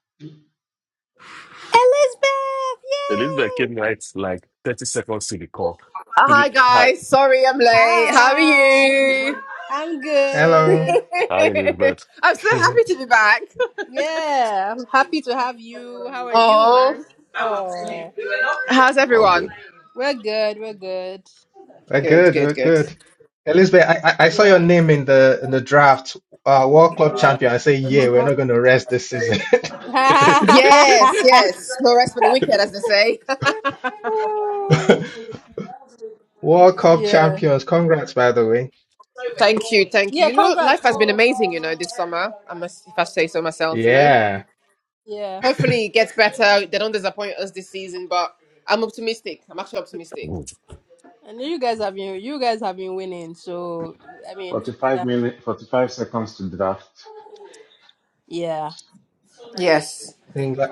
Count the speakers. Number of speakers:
5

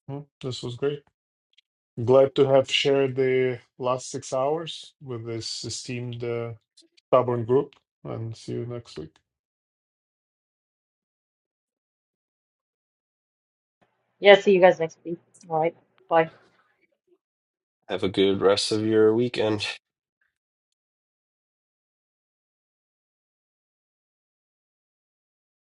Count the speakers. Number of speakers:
3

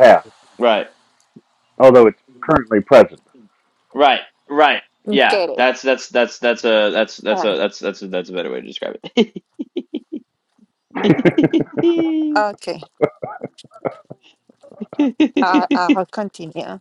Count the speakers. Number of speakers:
3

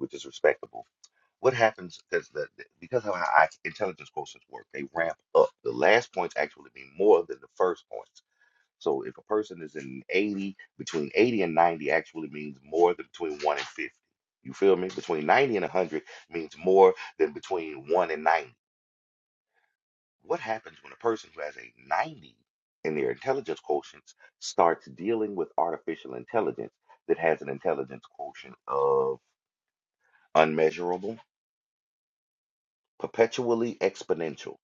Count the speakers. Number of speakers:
1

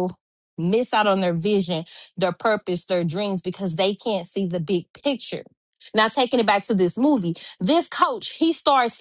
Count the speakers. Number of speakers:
1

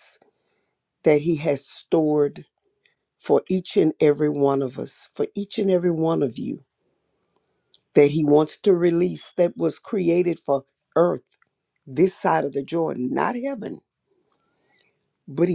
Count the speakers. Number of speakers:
1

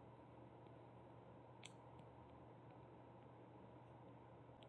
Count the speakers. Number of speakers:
0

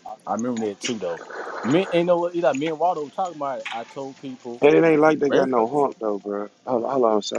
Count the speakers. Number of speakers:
2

